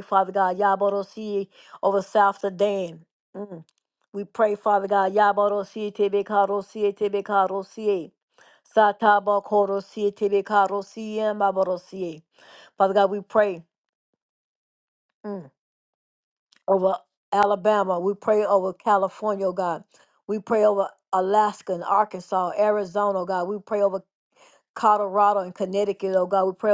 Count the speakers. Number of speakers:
1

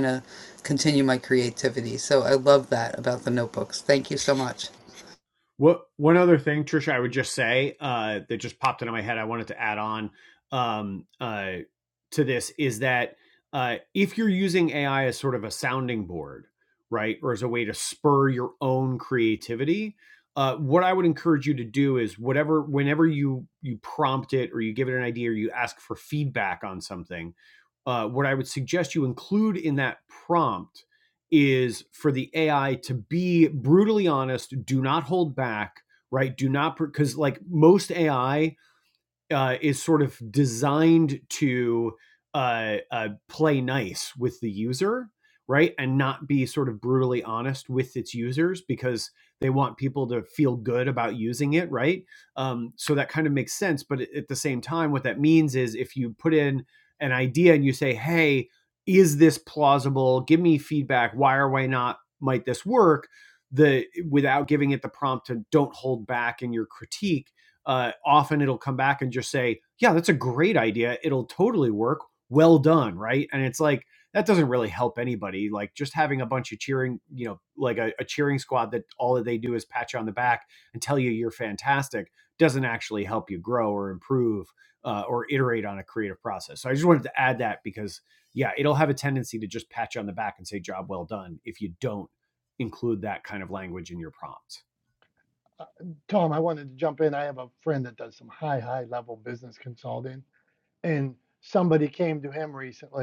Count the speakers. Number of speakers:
3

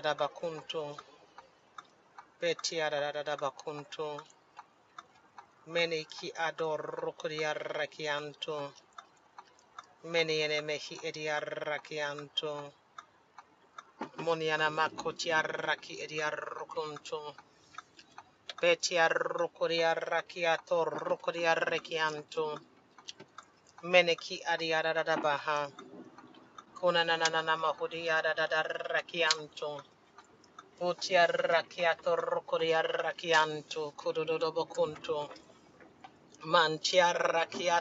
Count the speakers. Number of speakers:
1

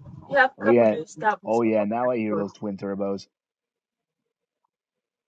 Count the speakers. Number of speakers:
1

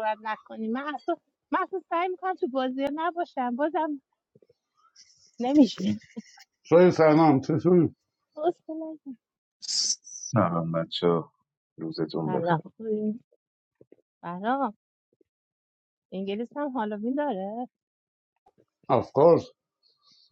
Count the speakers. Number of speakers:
3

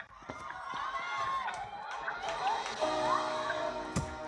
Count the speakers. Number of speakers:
0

